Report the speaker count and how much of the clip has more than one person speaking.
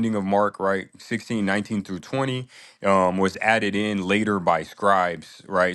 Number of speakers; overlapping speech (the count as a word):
one, no overlap